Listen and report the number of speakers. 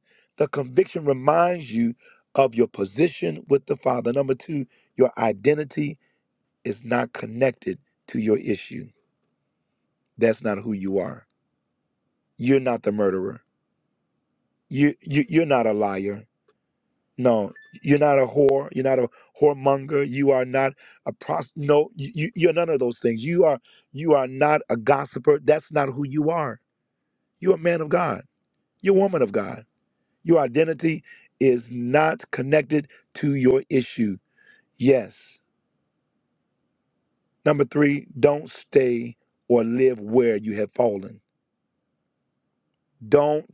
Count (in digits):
1